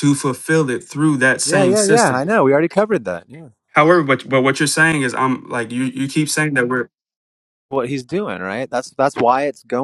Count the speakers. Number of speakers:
2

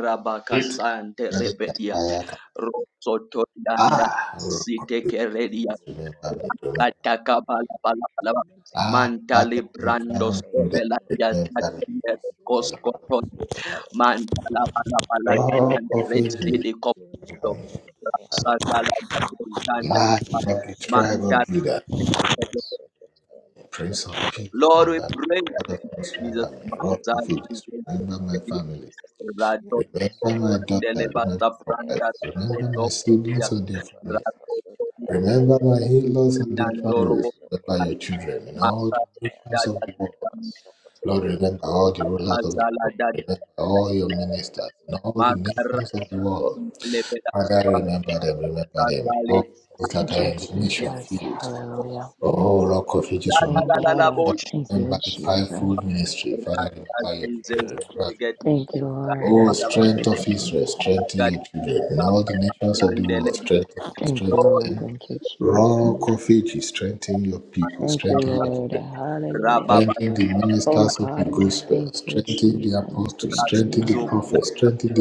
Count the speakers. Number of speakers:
4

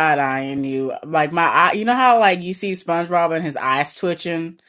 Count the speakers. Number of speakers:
1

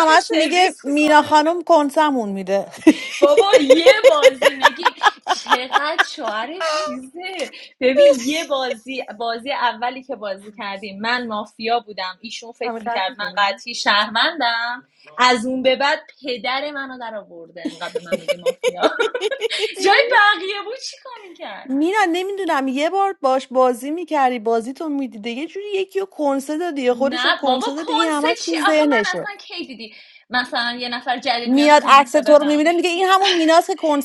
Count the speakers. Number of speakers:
2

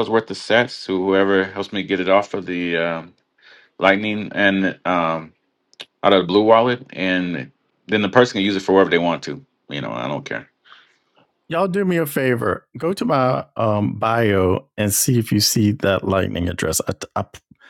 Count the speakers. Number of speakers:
2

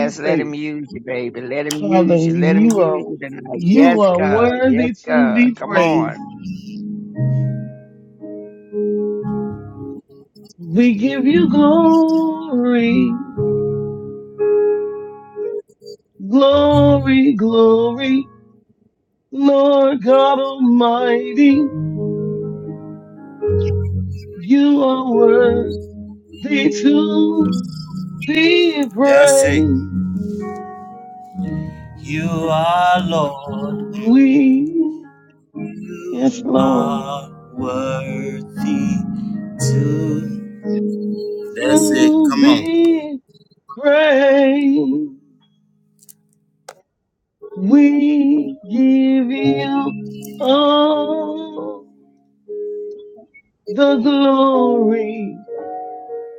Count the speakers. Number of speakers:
3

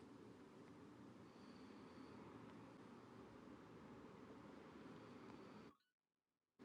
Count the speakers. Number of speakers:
0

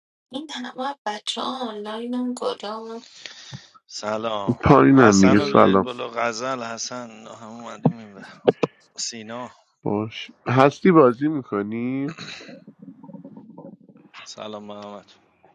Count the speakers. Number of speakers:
3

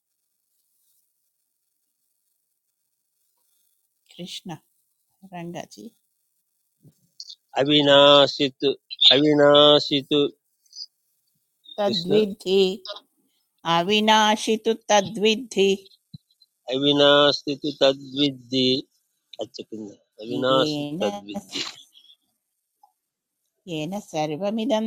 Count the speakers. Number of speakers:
2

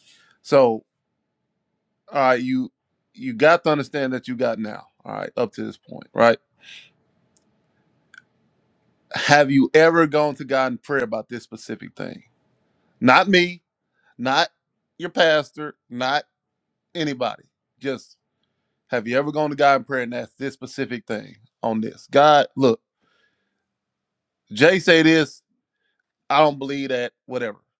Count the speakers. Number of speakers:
1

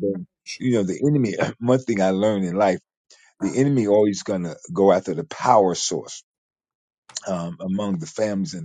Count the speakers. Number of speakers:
1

